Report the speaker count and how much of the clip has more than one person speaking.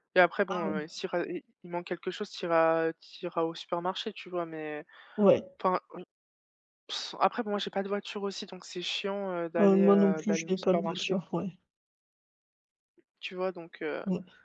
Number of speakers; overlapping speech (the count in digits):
2, about 13%